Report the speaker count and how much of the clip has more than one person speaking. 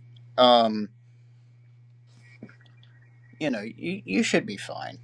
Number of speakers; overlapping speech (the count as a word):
one, no overlap